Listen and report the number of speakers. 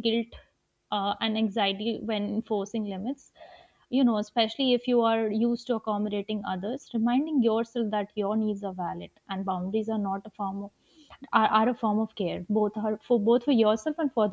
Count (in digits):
1